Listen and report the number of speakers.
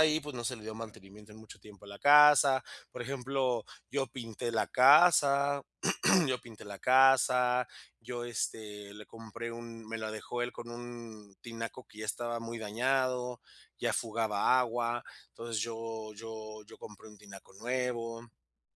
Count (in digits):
1